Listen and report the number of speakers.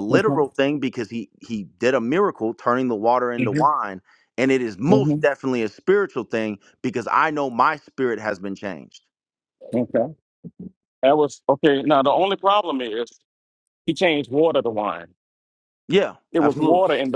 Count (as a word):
two